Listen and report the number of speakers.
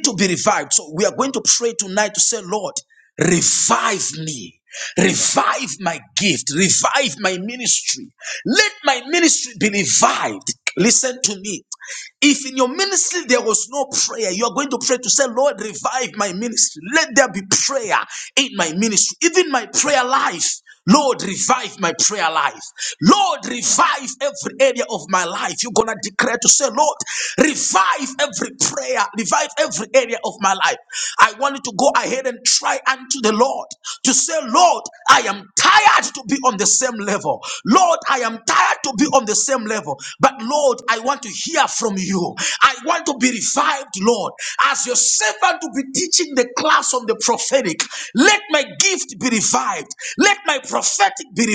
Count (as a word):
one